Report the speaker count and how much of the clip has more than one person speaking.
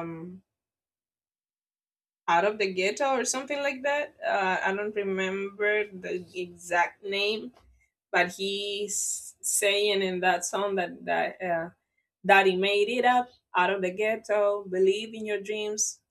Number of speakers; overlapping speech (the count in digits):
1, no overlap